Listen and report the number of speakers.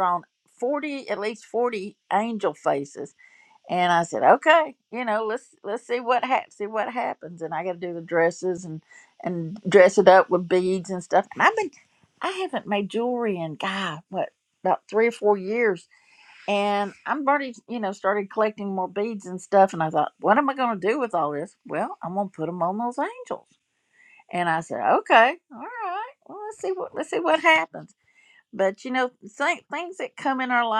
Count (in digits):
1